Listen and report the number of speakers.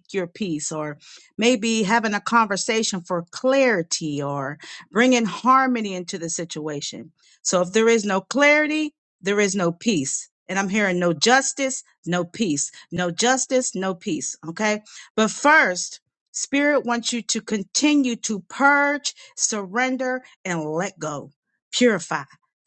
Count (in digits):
1